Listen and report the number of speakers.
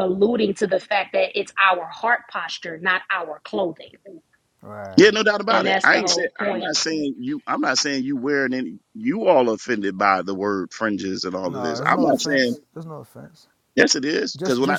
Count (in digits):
3